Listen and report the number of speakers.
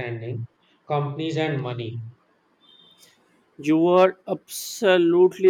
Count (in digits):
2